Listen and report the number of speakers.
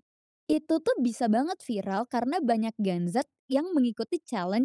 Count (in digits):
1